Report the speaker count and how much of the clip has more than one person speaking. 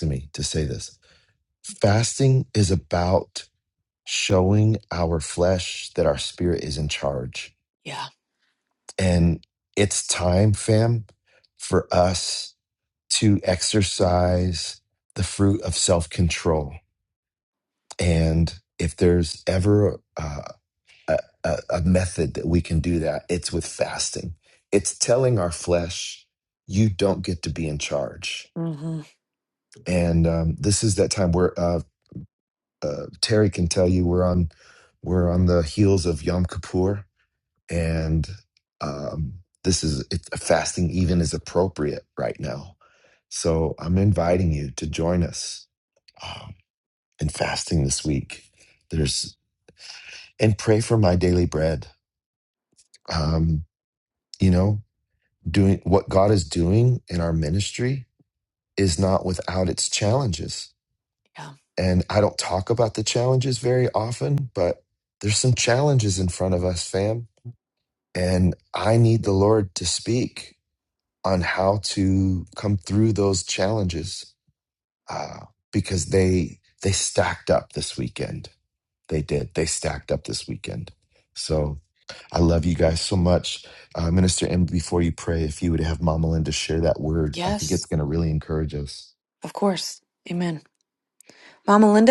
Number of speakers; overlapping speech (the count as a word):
two, under 1%